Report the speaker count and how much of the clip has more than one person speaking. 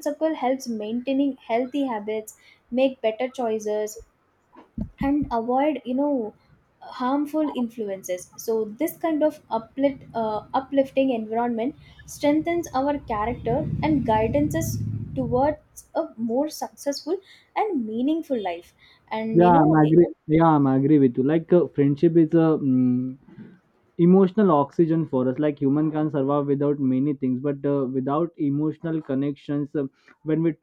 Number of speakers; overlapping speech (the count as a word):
two, about 2%